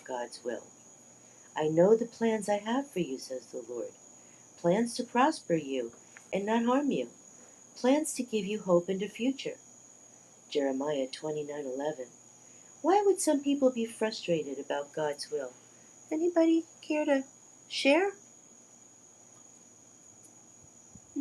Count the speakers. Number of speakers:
1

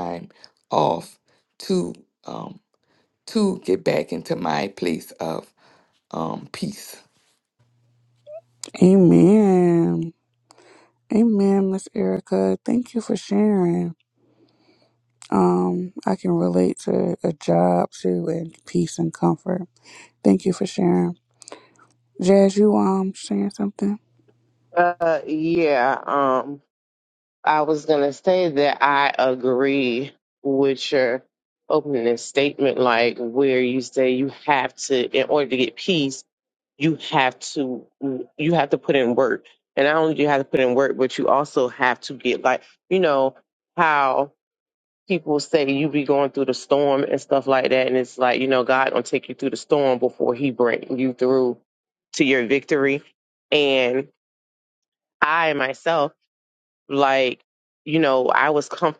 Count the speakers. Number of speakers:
3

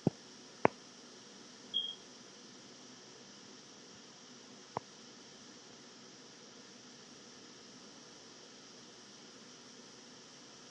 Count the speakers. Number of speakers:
0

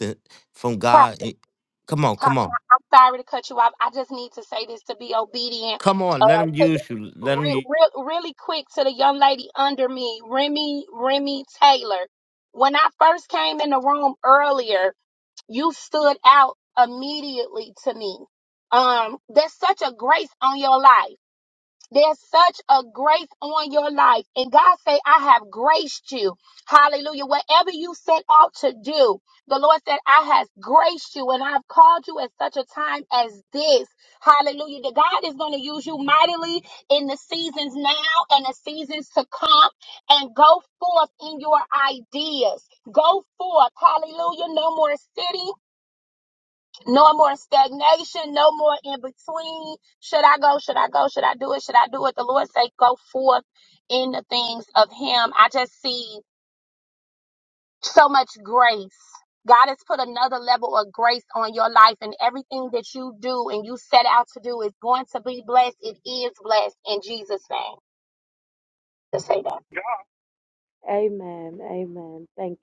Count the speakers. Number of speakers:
3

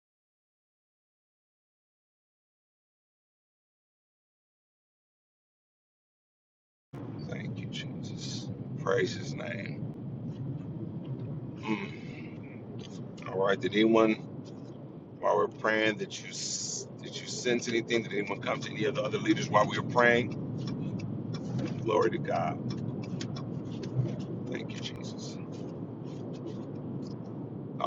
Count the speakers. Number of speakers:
1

